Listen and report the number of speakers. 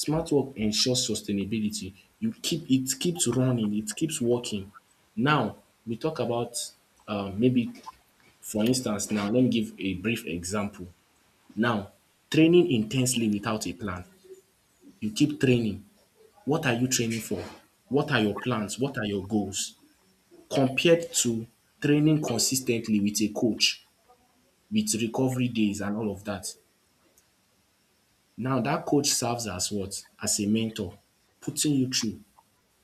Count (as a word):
one